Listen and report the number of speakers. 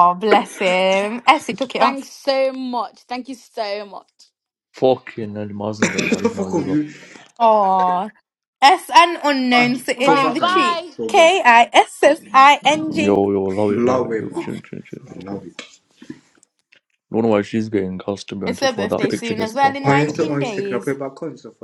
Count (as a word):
four